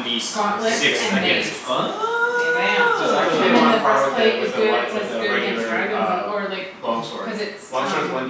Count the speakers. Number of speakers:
3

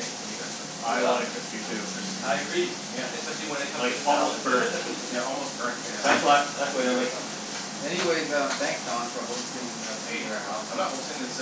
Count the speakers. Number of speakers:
4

